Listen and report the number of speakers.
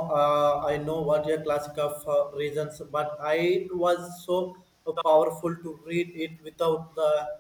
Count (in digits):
1